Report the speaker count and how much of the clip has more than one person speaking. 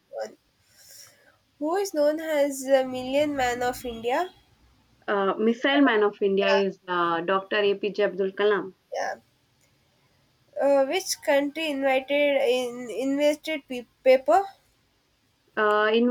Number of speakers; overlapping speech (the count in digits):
2, about 1%